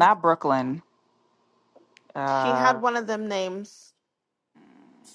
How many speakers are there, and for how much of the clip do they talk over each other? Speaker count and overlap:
two, about 9%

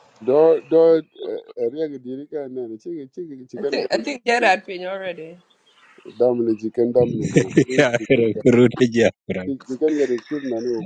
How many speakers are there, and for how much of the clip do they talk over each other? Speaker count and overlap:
three, about 6%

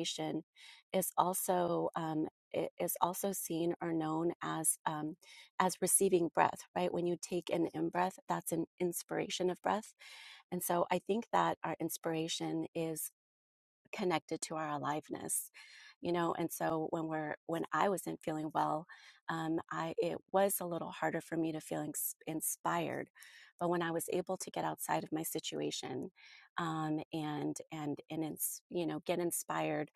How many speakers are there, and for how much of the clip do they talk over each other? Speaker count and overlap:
one, no overlap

